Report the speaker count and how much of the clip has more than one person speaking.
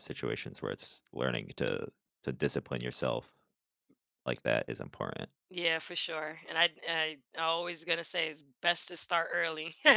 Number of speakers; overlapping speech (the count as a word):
two, no overlap